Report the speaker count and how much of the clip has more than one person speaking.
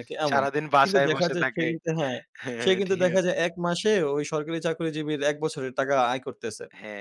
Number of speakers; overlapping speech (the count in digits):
2, about 20%